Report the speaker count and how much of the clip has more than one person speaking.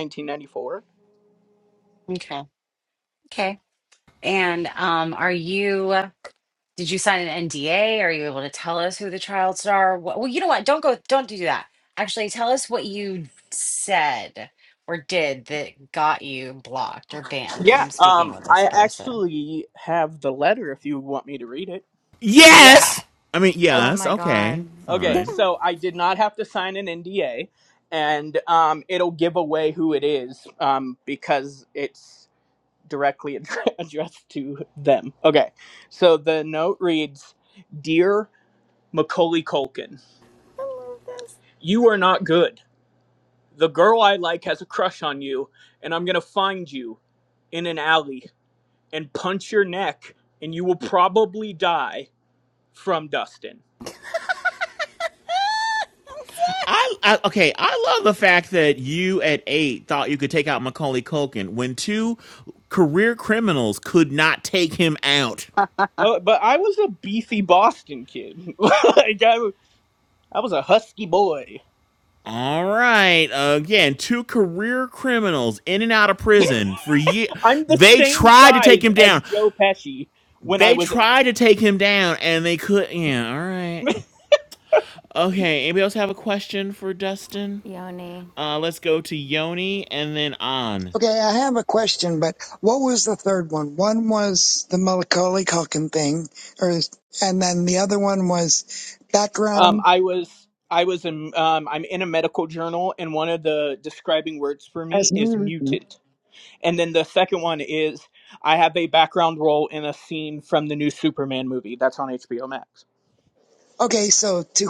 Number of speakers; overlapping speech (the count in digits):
5, about 6%